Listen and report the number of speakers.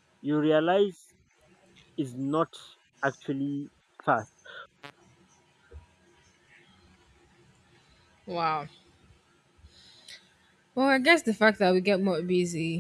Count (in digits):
2